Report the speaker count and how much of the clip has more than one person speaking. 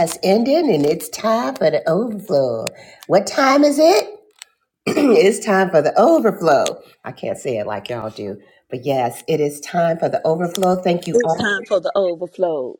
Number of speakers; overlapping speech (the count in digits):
2, about 4%